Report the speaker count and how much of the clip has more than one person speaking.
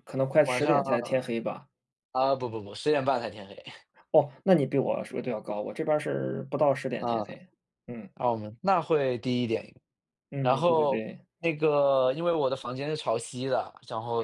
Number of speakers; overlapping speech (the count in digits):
2, about 12%